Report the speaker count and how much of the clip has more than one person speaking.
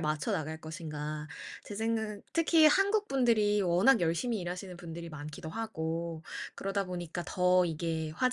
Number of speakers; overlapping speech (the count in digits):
1, no overlap